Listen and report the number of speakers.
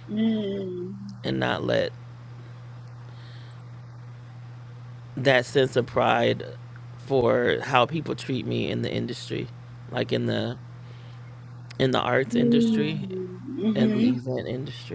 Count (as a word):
two